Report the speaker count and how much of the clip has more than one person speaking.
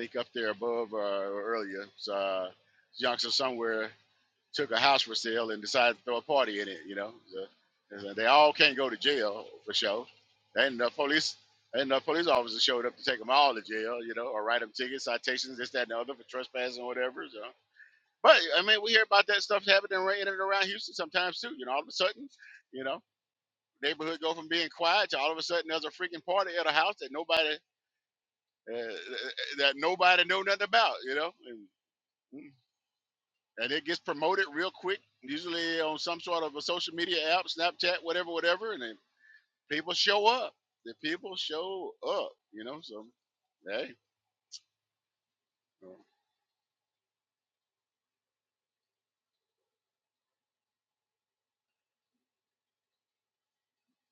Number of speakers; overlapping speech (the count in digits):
1, no overlap